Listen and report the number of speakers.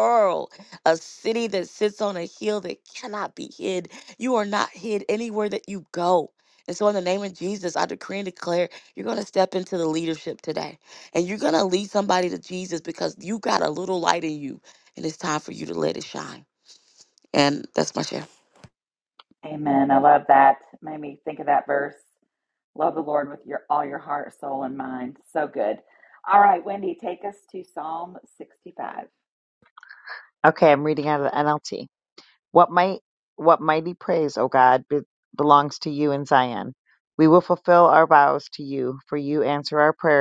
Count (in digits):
3